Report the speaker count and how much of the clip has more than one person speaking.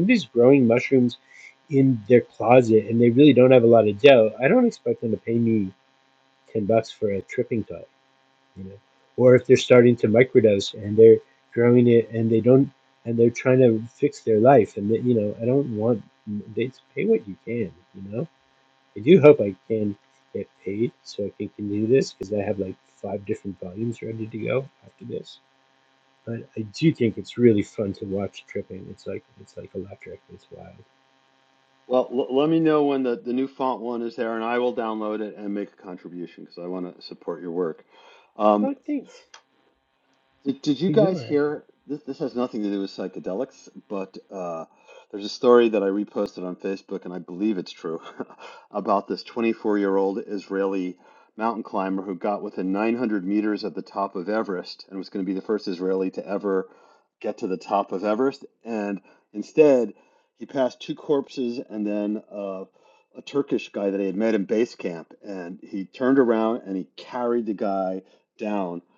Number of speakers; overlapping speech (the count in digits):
2, about 1%